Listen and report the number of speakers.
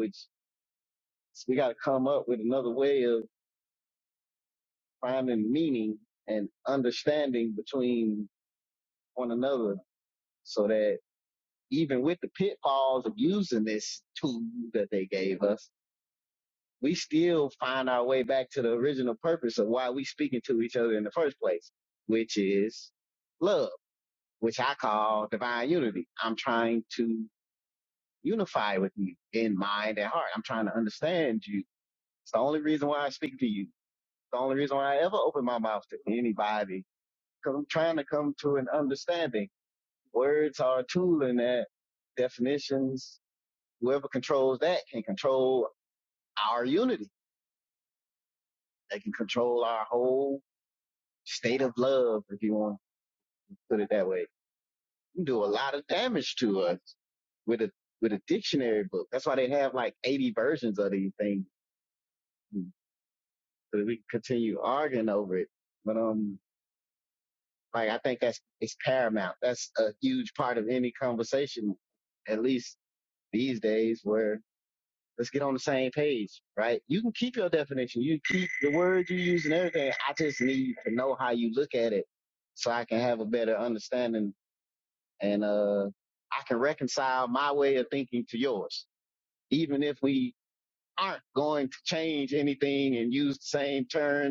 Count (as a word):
one